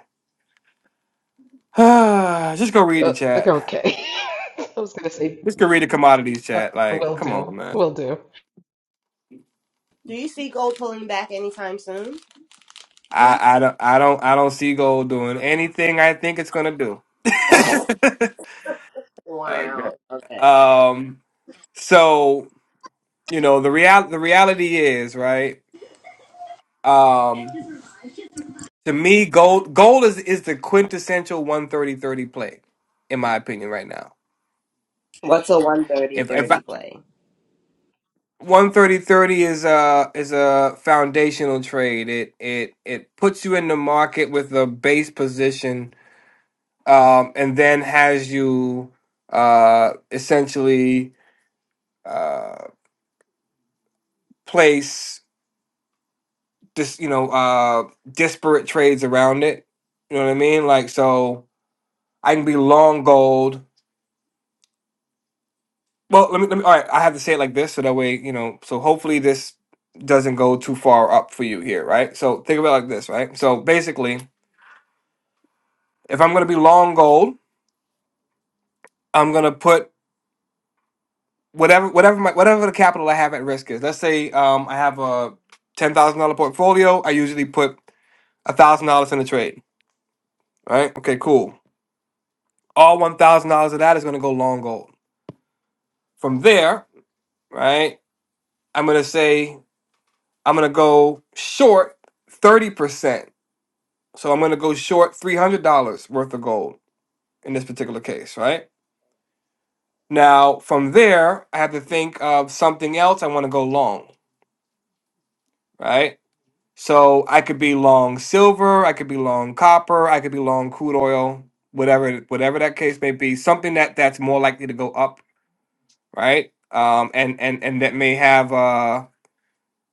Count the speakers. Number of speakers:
3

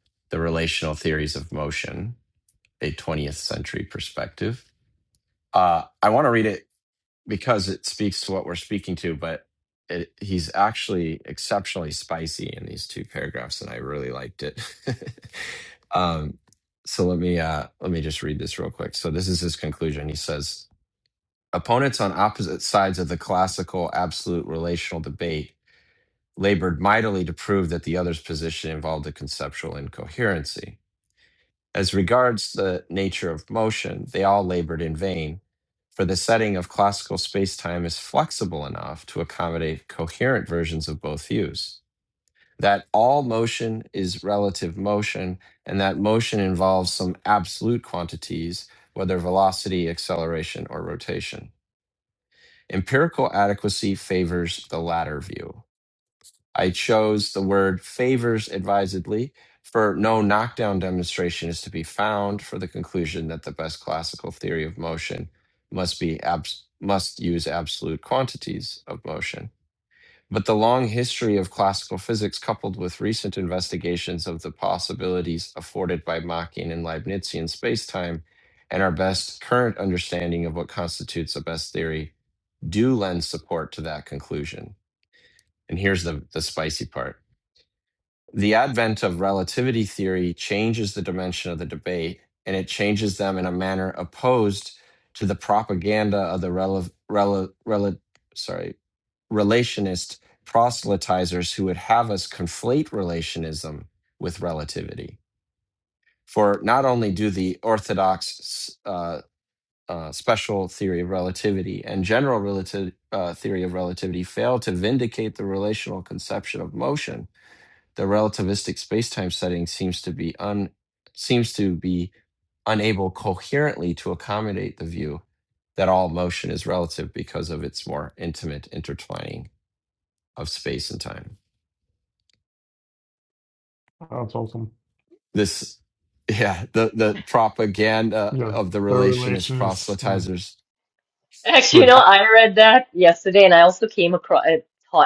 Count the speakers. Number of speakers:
3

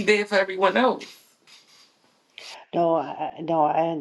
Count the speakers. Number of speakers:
2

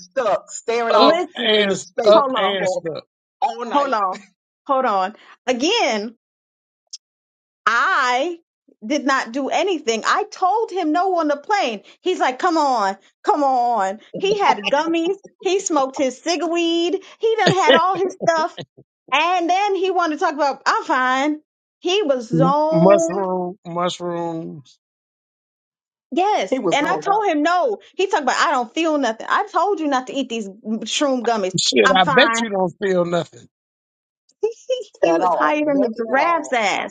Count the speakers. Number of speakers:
3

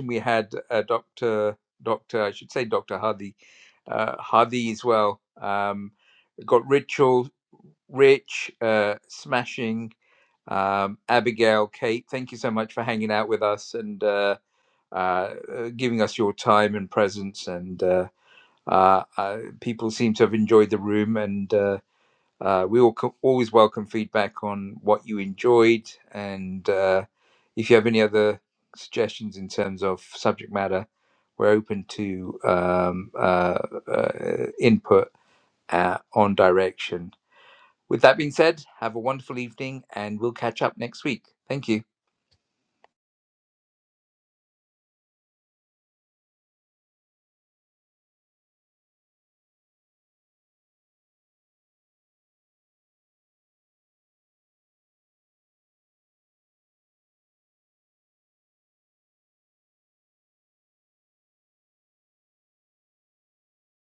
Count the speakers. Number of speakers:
1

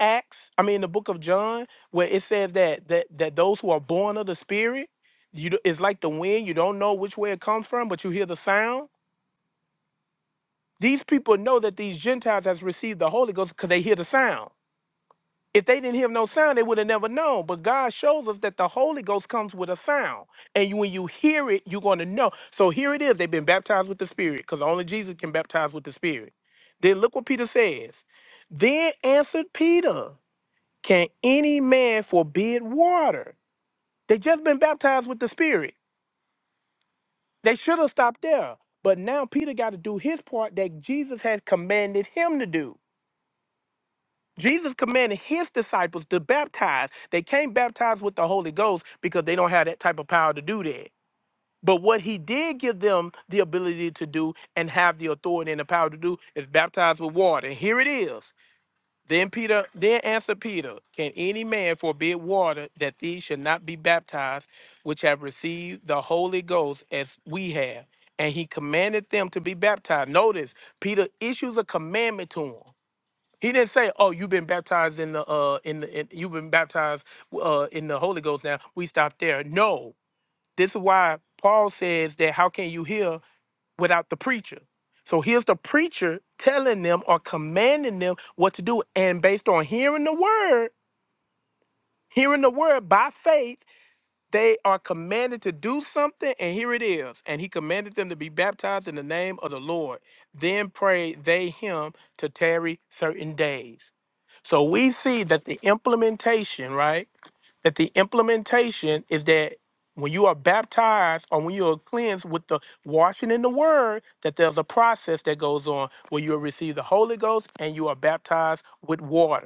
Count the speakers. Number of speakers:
1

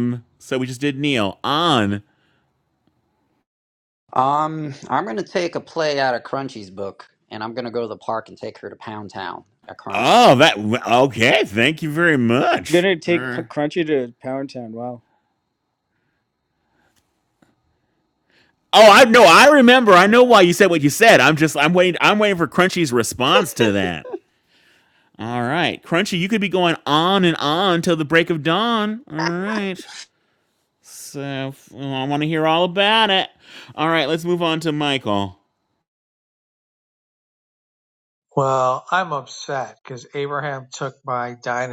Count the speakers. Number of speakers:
4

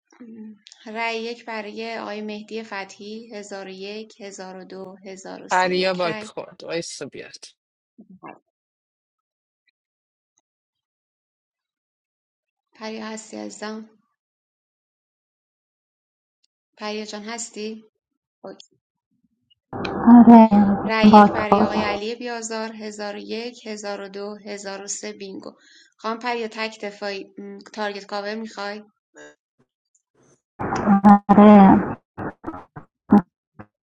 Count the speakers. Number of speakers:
3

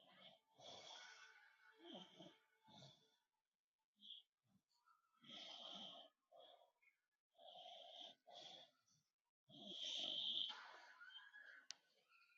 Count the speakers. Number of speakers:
0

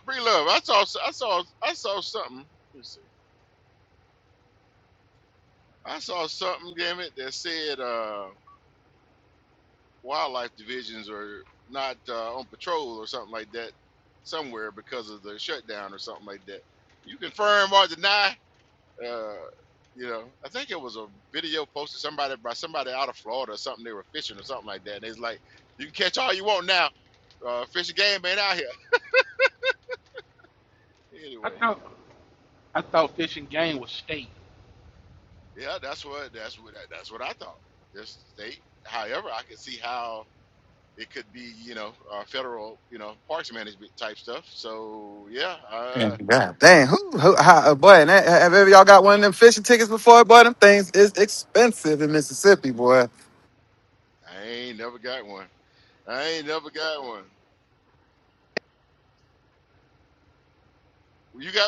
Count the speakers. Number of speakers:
3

